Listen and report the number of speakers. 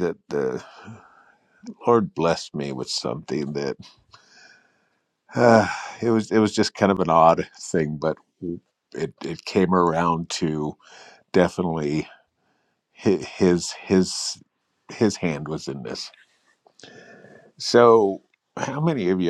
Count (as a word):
one